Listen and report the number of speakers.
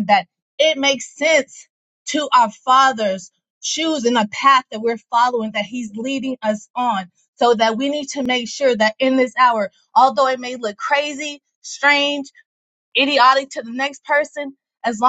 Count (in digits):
1